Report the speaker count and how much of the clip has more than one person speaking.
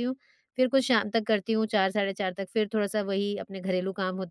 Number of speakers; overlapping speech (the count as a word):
one, no overlap